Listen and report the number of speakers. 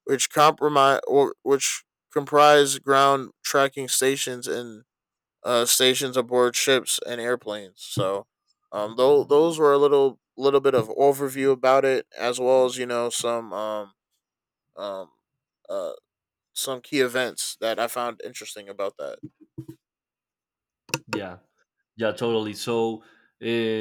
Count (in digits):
2